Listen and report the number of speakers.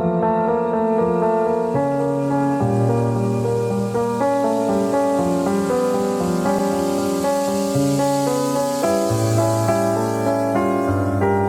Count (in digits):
0